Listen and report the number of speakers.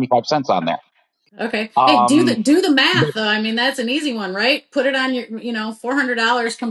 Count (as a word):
two